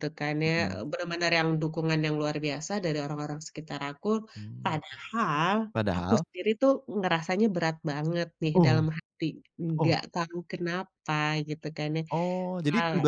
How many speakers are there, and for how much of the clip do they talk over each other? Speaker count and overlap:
2, about 10%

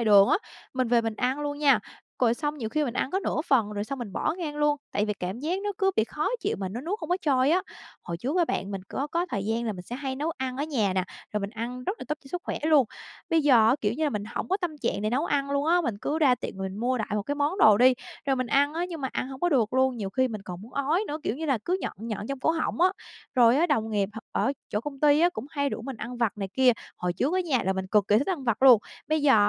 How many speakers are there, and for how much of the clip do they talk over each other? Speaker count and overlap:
1, no overlap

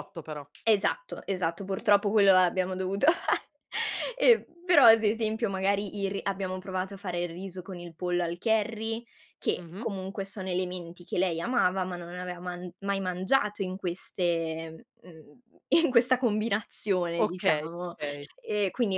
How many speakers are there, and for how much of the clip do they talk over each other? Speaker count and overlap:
2, about 6%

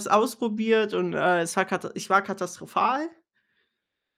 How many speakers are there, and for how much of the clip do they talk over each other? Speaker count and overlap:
1, no overlap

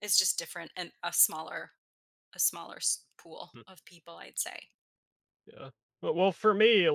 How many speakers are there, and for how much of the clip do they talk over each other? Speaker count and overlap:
2, about 1%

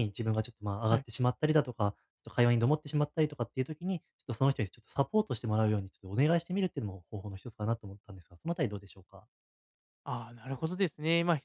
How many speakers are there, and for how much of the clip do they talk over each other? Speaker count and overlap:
2, about 1%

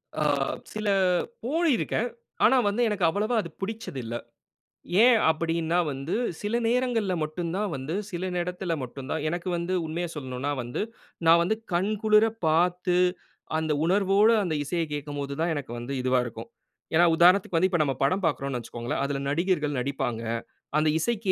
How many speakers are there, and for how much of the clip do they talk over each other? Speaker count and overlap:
1, no overlap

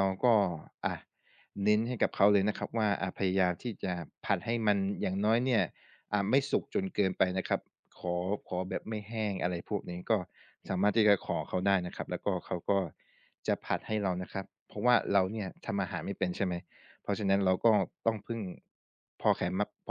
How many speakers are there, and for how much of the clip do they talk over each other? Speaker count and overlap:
1, no overlap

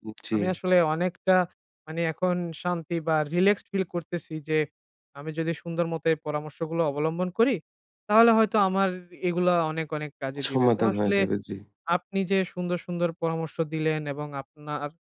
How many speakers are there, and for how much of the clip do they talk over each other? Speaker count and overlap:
2, about 6%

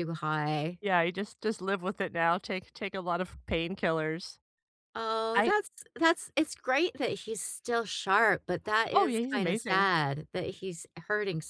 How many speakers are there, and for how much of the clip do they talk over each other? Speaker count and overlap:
2, about 10%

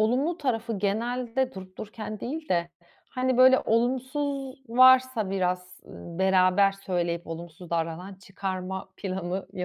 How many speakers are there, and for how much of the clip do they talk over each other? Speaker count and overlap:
1, no overlap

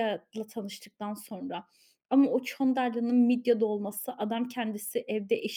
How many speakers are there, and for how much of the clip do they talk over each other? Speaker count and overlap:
1, no overlap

